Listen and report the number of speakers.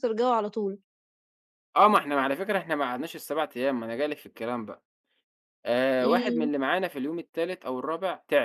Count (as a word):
two